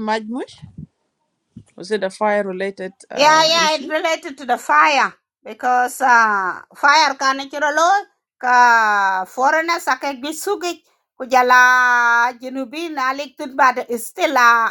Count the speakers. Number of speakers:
2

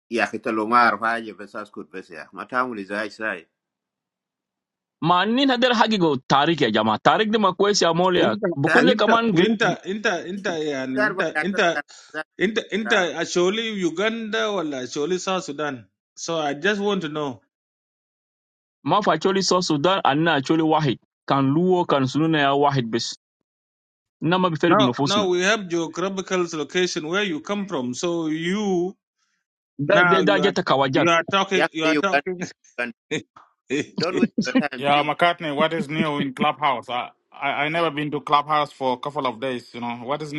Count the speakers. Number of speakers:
4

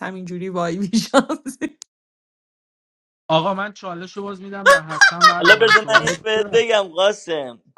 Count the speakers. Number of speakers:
3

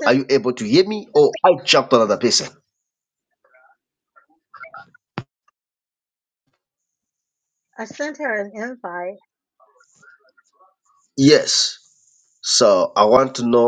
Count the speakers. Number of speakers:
2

